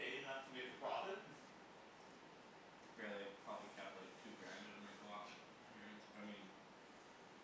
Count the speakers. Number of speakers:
two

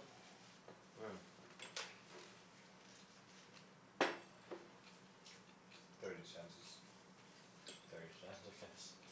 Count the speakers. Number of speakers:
one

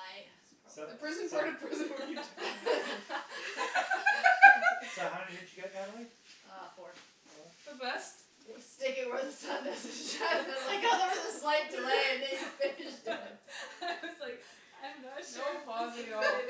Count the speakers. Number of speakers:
four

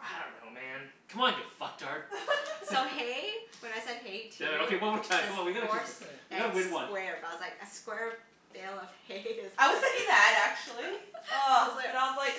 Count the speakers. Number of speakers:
four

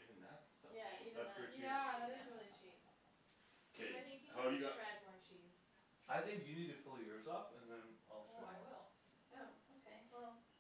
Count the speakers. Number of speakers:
four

